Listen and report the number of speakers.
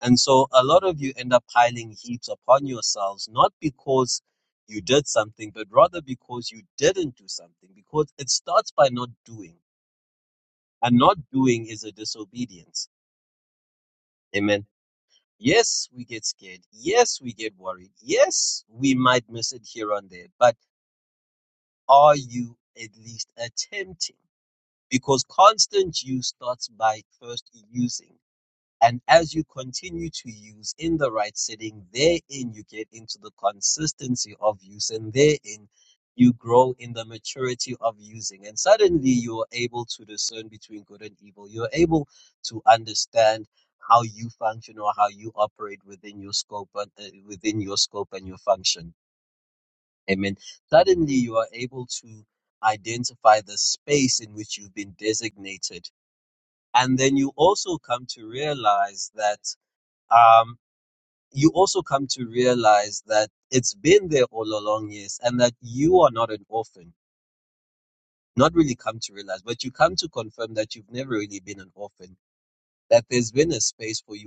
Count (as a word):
one